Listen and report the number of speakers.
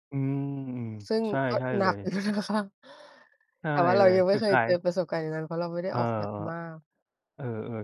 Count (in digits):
2